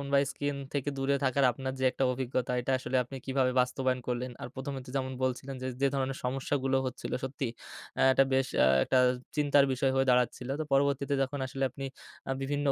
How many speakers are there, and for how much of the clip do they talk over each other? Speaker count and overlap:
1, no overlap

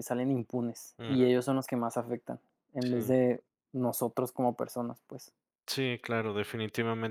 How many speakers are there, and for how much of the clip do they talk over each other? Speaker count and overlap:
2, about 8%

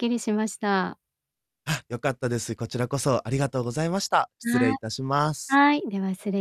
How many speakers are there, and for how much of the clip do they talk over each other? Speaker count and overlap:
2, about 5%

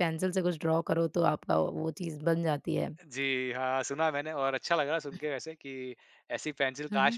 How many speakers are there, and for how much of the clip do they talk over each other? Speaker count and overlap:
2, about 4%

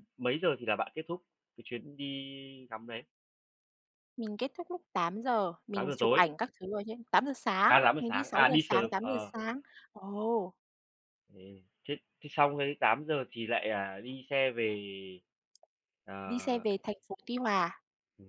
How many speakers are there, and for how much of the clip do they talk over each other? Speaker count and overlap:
2, about 13%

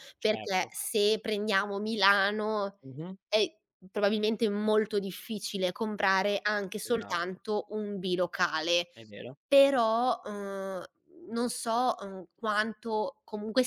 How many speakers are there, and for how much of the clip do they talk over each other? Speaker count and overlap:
2, about 5%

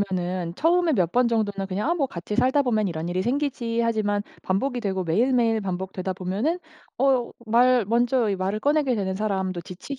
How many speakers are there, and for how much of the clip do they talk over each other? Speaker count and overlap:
1, no overlap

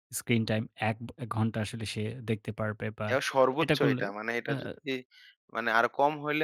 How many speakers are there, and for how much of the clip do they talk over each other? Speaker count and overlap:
2, about 11%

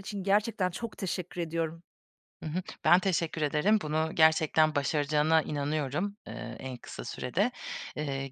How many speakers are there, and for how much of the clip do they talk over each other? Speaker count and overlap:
2, no overlap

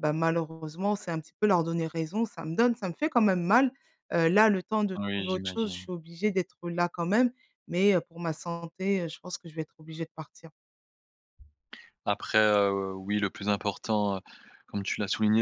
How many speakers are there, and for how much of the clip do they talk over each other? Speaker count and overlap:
2, about 5%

